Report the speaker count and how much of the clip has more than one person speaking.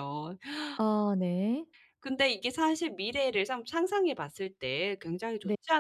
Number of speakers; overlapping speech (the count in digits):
2, about 2%